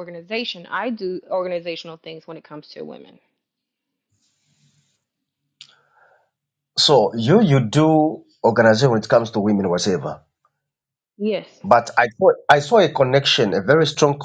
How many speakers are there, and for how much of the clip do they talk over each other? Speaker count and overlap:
2, no overlap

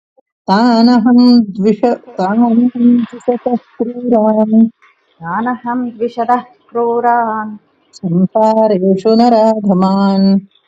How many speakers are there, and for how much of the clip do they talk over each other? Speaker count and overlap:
2, no overlap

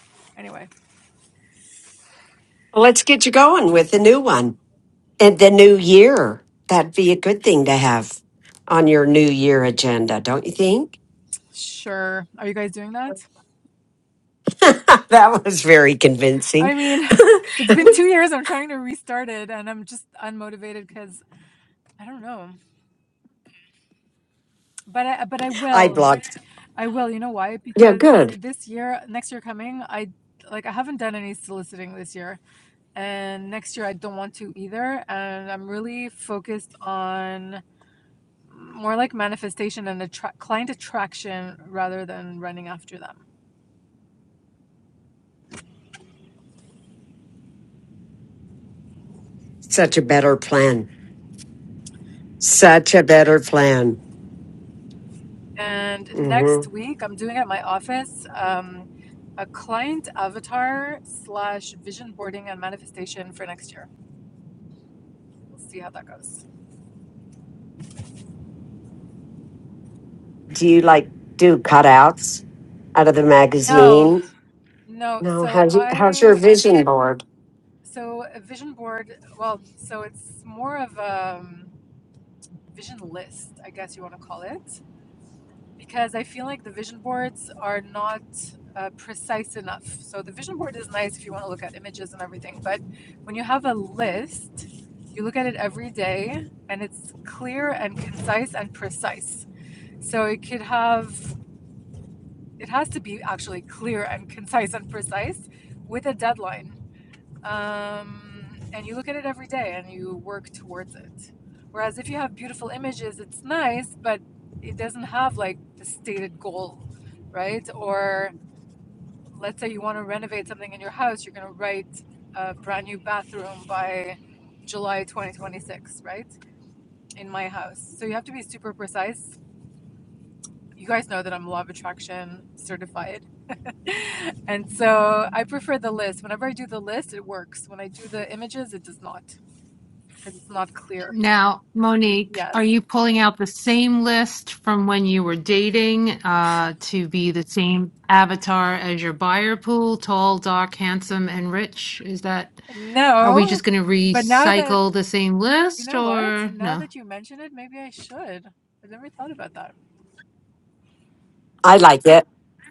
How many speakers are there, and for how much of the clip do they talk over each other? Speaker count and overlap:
3, about 4%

